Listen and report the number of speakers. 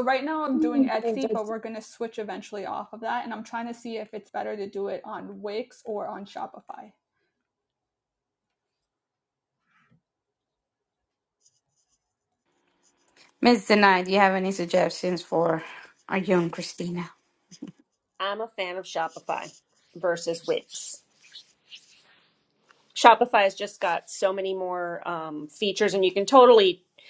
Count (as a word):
three